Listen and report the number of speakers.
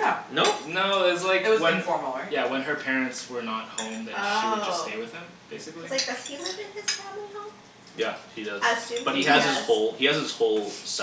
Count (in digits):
4